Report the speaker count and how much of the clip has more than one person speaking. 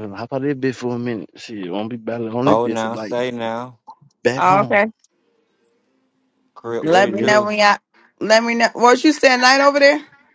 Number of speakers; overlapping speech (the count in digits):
3, about 18%